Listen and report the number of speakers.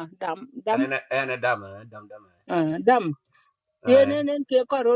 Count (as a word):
two